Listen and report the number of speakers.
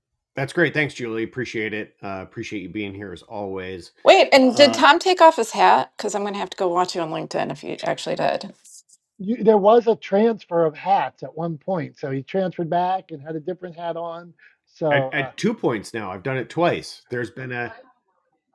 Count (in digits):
3